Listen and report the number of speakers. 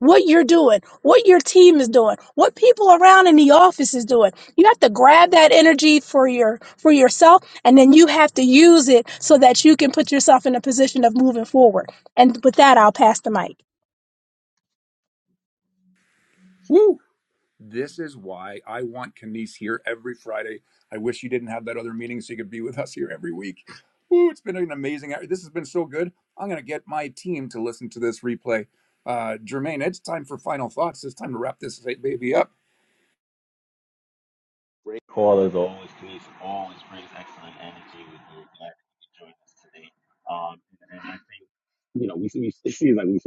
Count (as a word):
three